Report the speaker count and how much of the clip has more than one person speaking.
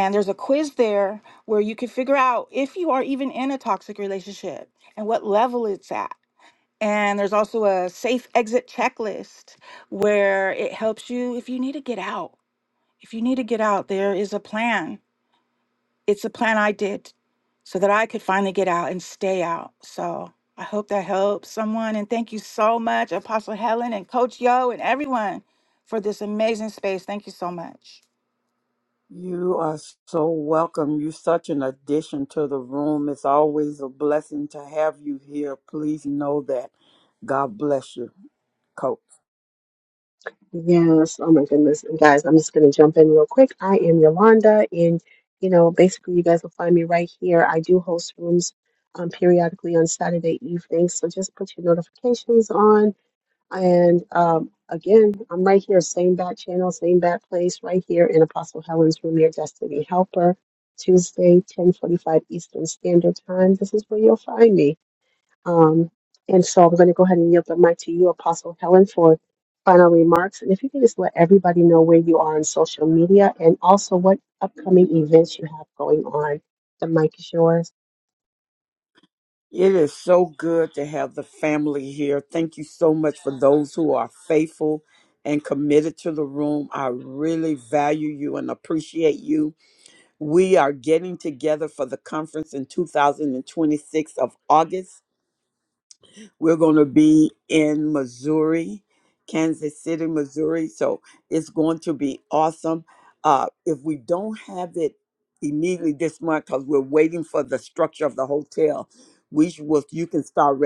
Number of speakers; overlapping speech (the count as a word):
three, no overlap